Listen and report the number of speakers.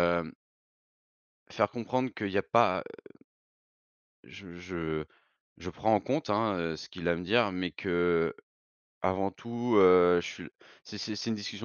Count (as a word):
one